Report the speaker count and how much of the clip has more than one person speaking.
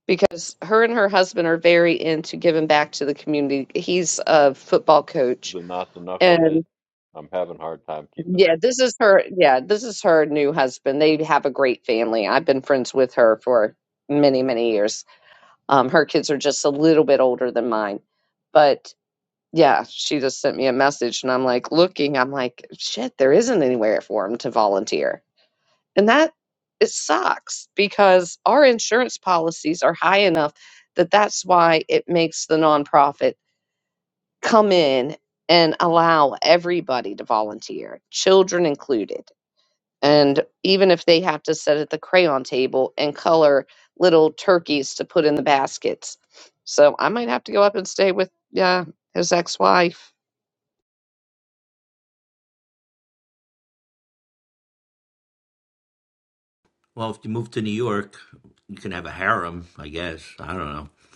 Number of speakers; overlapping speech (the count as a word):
three, about 1%